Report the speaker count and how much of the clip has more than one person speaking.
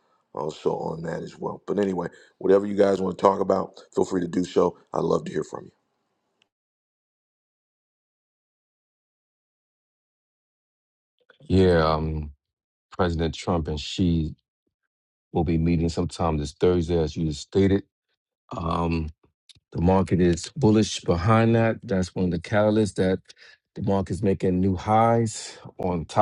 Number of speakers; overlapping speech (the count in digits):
2, no overlap